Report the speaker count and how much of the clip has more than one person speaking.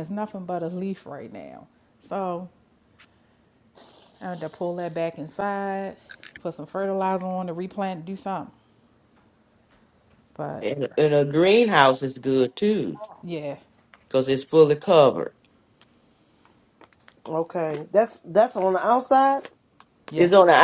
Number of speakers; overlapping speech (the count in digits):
3, about 1%